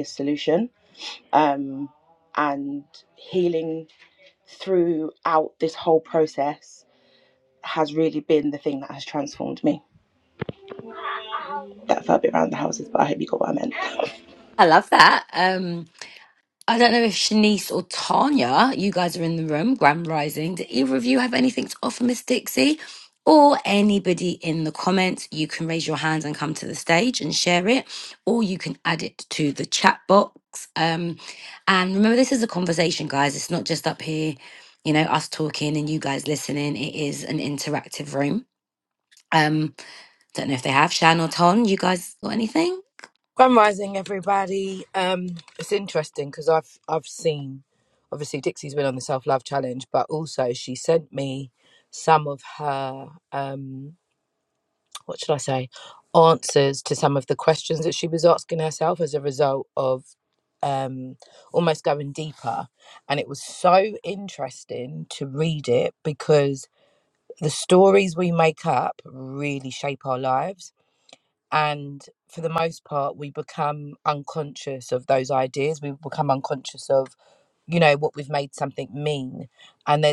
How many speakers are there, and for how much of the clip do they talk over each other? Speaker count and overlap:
3, no overlap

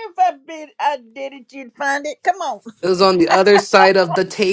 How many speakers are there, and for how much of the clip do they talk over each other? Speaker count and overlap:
2, no overlap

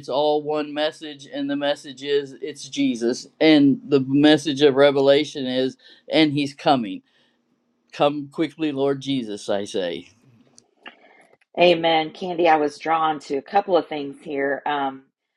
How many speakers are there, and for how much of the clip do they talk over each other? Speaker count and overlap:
2, no overlap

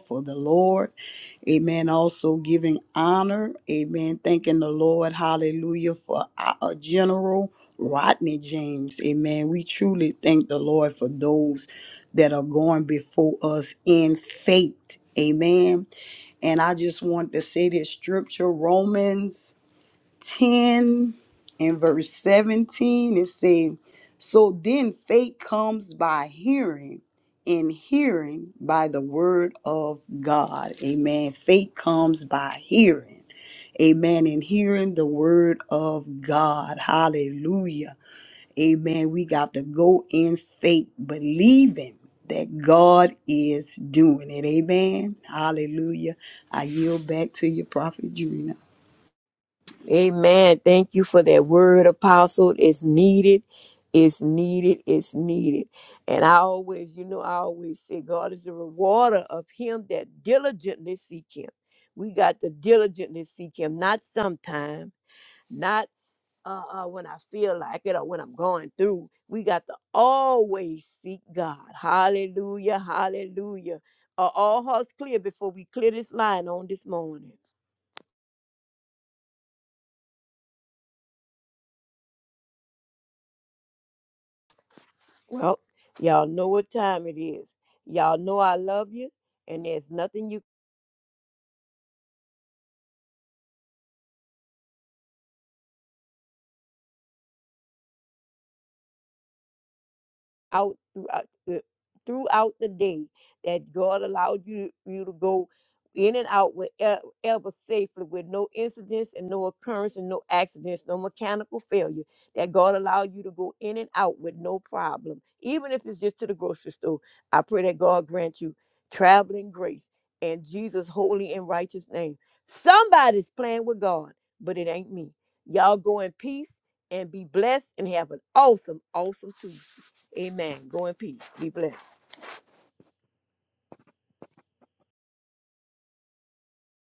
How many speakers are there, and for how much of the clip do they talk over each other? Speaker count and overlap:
2, no overlap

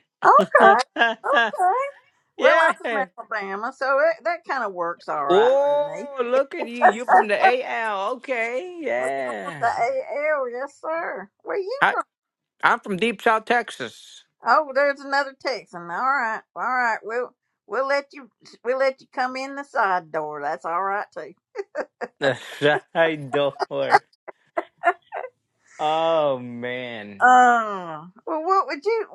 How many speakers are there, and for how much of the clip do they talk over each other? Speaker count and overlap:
2, about 6%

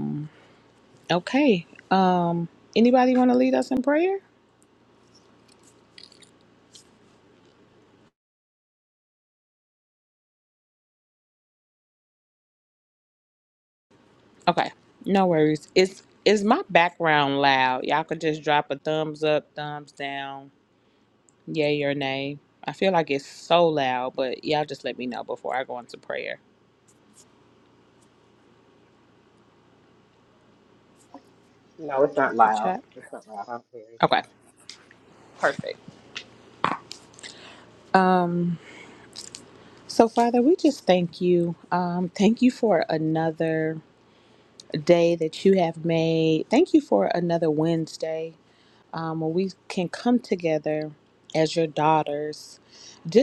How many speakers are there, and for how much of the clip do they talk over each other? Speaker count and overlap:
2, about 1%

